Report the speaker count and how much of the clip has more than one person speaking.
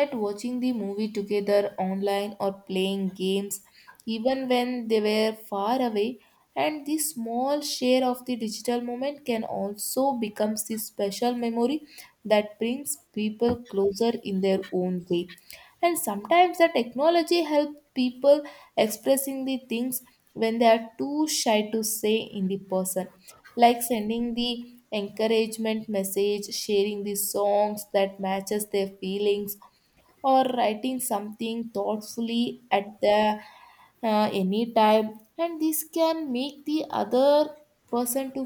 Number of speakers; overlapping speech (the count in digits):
1, no overlap